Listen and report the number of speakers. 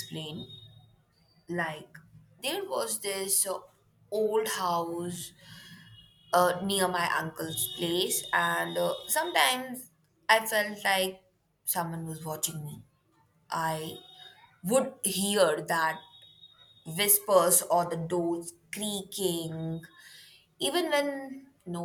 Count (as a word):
one